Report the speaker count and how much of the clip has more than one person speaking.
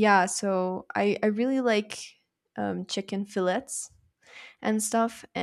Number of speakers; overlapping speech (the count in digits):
1, no overlap